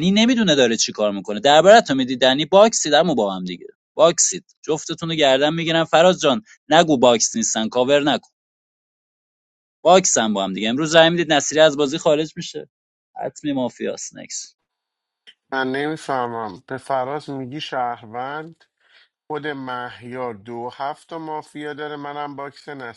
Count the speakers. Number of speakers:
2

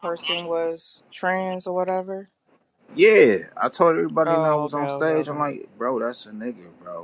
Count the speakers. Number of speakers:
2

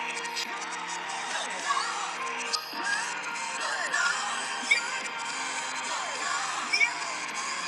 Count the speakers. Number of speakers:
0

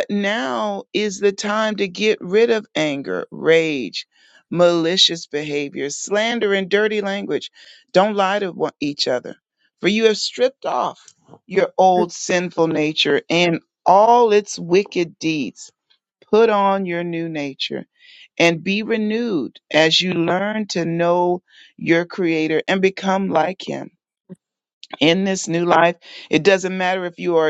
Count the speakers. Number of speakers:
1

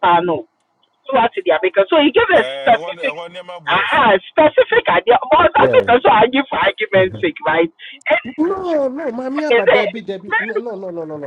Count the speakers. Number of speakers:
3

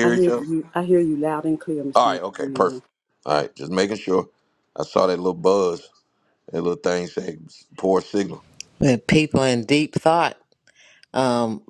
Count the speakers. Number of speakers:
3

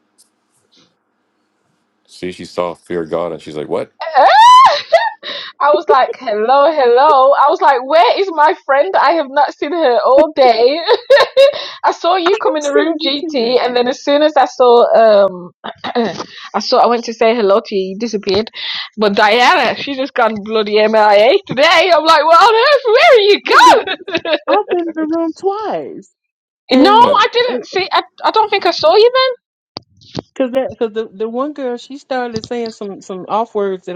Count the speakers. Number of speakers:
3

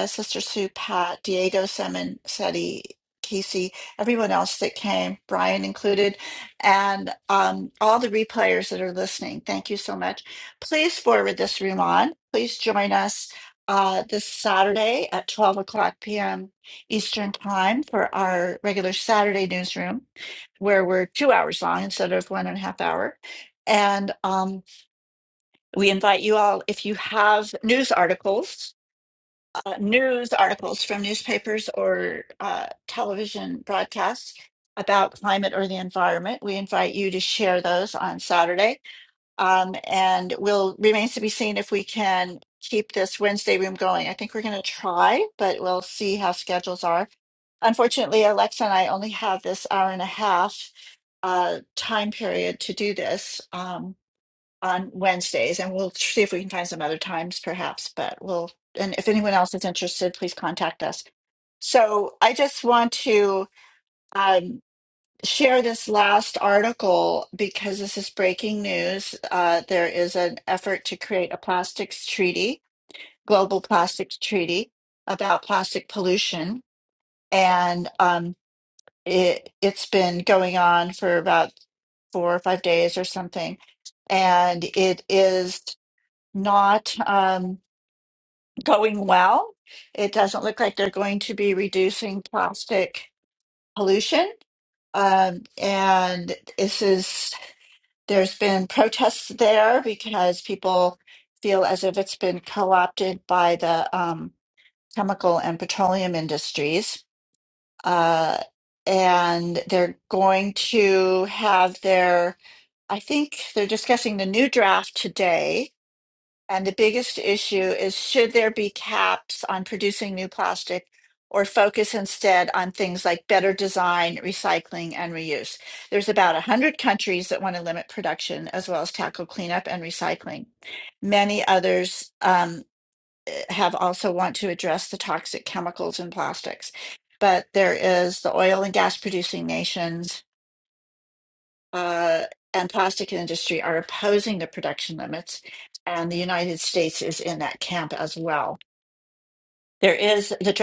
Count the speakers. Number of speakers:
1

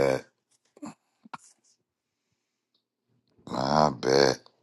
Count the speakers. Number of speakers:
1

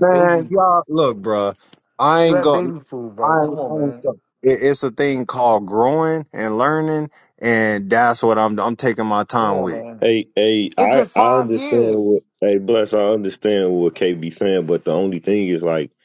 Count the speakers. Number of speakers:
3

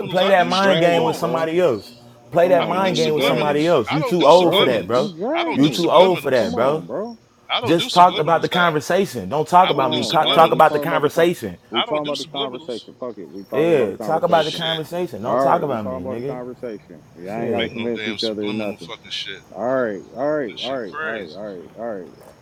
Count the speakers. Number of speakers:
3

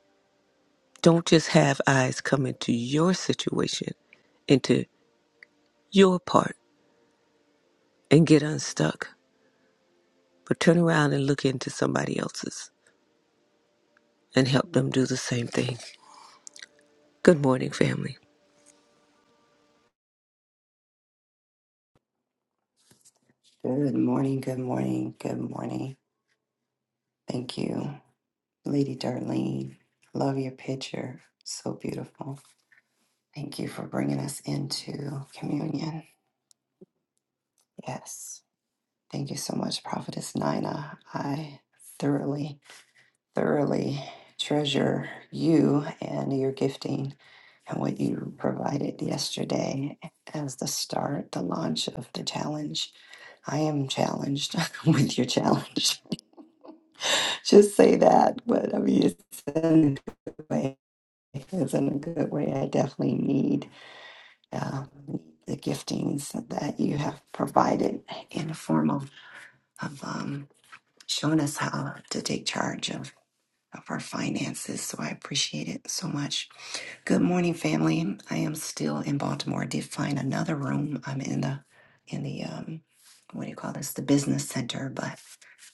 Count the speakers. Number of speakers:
2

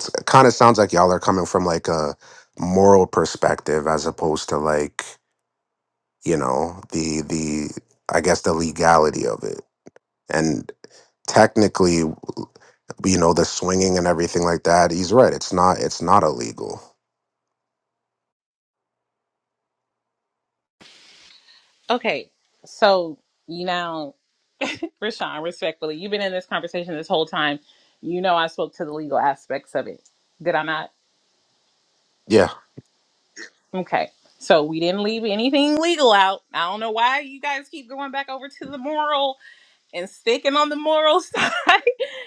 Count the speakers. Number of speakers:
2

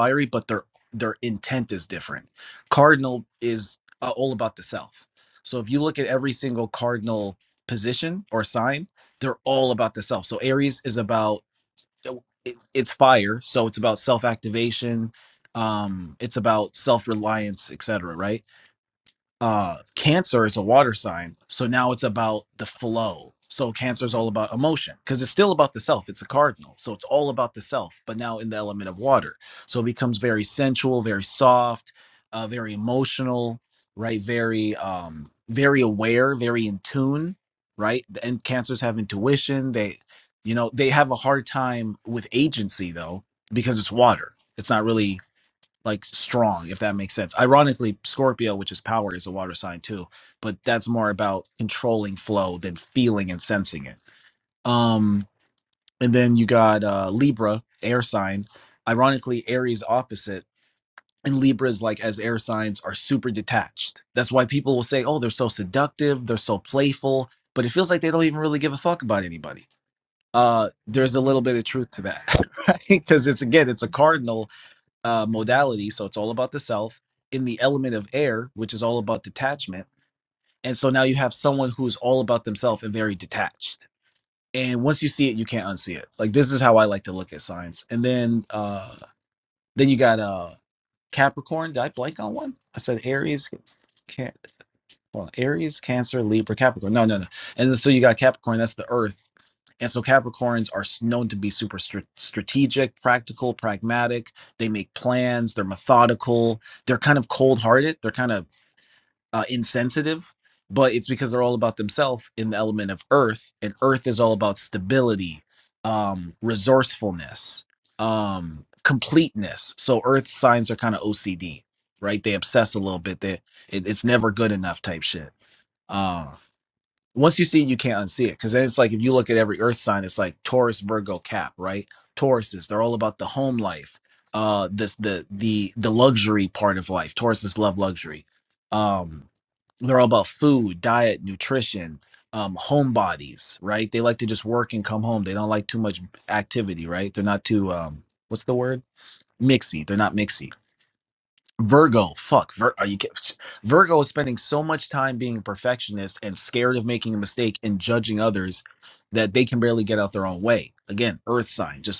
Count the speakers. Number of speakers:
1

